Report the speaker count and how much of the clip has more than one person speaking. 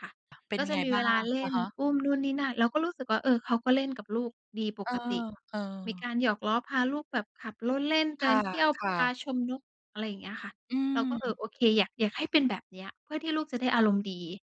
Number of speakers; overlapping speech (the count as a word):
two, about 15%